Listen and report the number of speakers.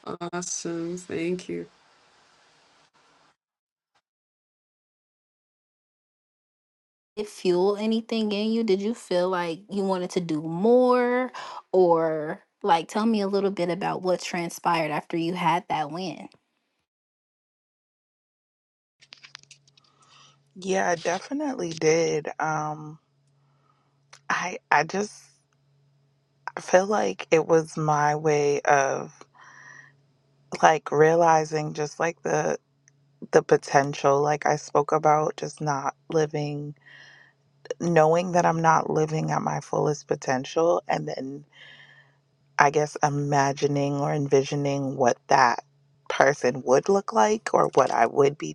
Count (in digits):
3